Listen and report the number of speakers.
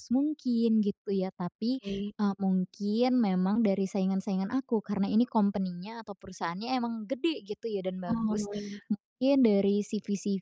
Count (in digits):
2